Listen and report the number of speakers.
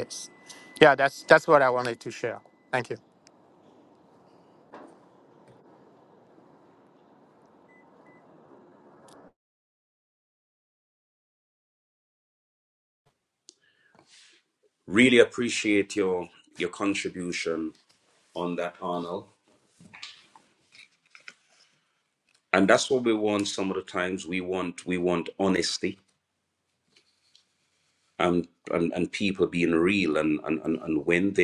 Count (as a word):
two